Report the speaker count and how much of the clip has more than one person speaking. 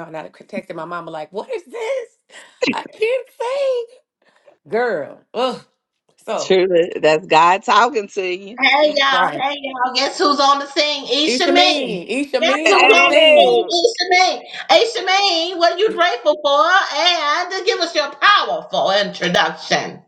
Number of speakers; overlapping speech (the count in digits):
3, about 13%